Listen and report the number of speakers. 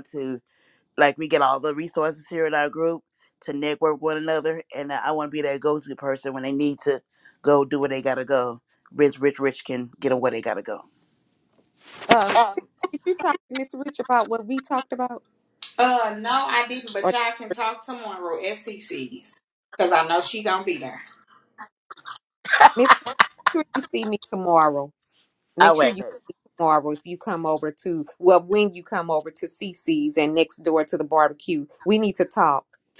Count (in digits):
3